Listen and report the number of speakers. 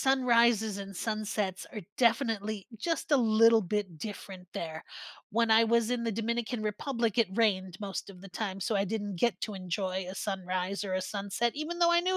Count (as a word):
one